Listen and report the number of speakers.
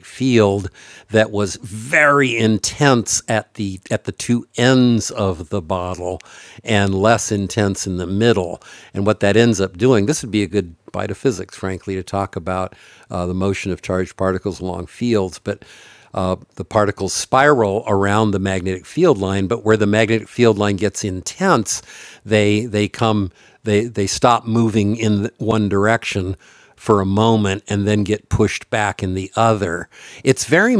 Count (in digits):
1